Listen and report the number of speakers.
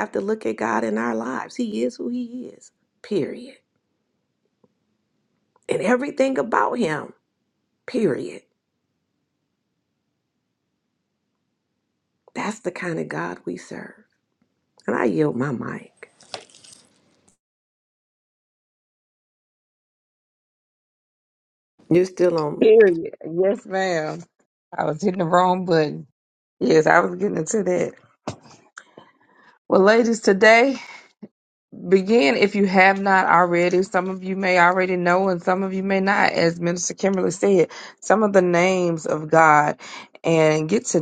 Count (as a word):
two